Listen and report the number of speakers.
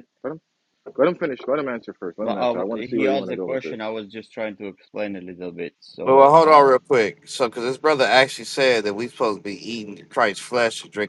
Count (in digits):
3